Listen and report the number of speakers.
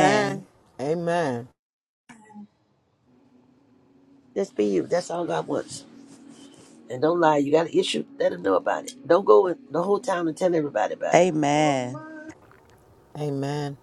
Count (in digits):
3